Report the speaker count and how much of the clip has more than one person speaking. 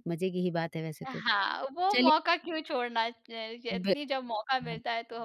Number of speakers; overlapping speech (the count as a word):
two, about 13%